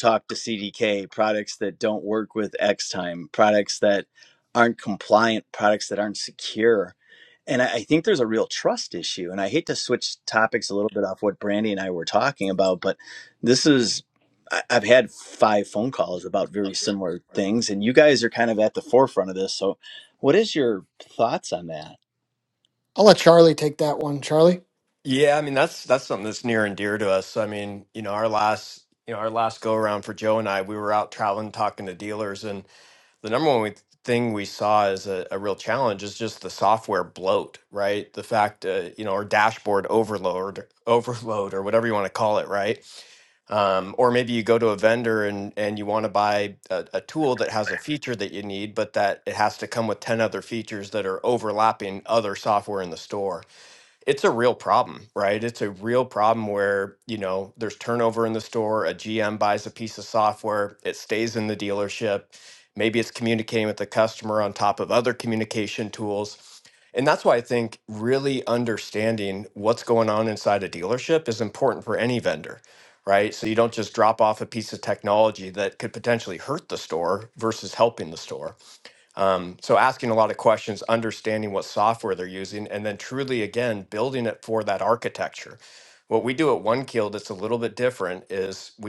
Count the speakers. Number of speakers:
3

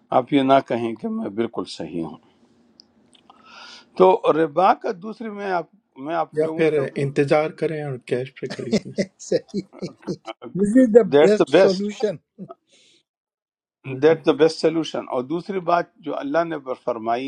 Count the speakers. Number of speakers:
3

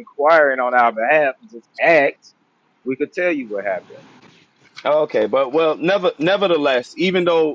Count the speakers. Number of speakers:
2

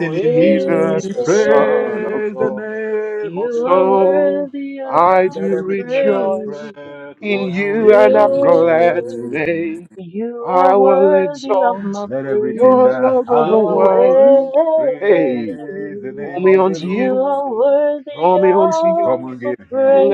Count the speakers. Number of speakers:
3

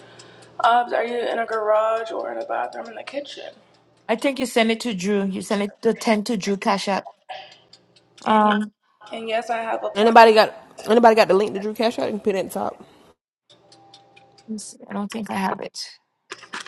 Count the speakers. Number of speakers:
3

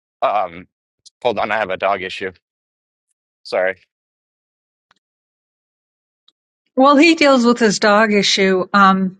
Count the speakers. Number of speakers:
2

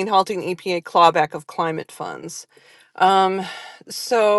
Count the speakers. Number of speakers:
1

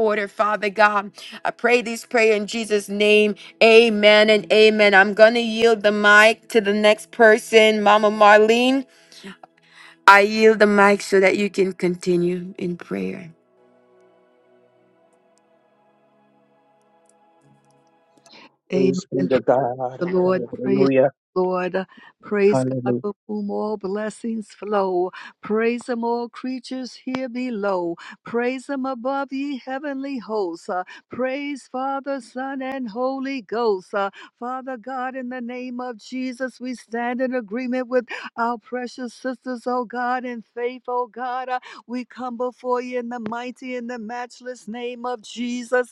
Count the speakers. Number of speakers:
3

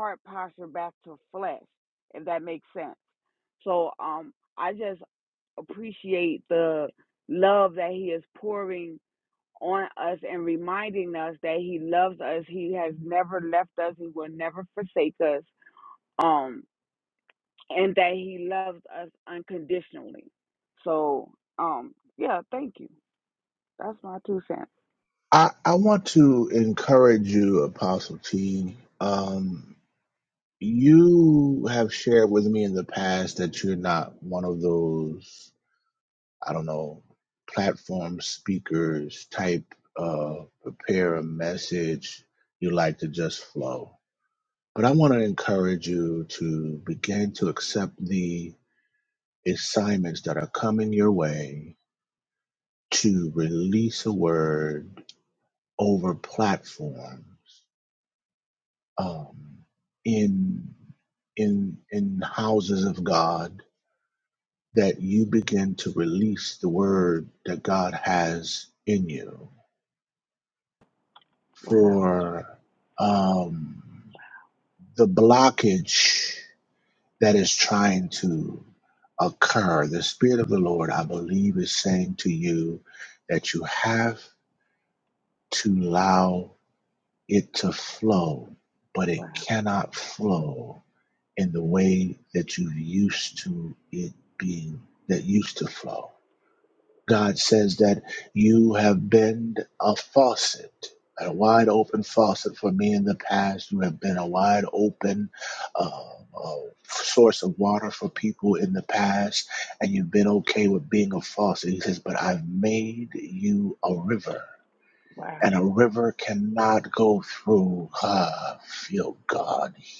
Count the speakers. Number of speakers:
2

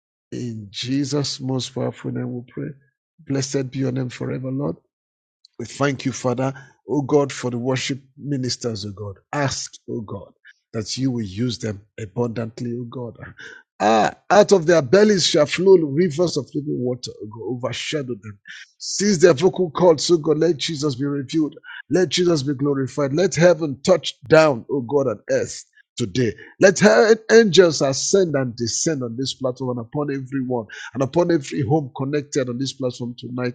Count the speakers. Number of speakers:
1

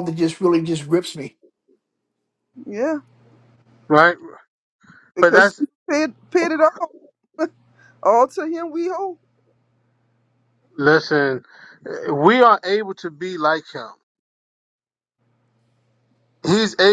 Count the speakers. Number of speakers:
3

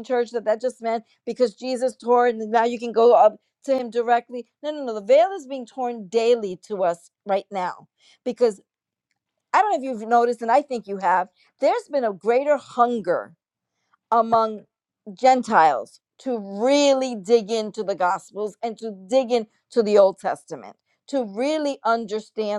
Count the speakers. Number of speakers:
1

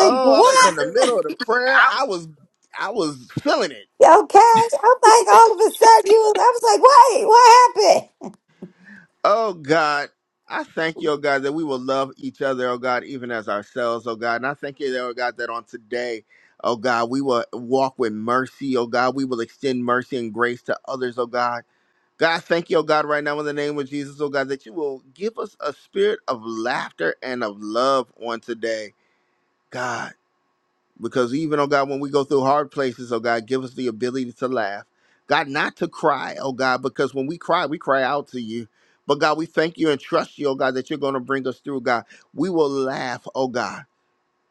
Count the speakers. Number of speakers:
2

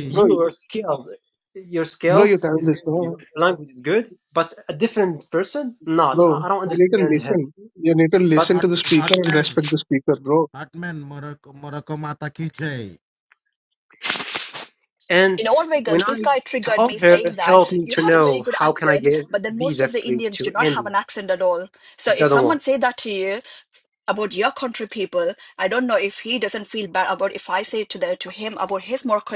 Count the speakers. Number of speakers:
4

